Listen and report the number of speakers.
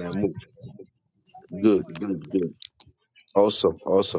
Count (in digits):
2